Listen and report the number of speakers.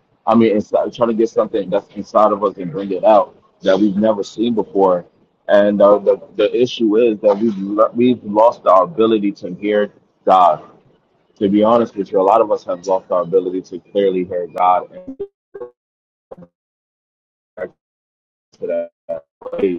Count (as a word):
one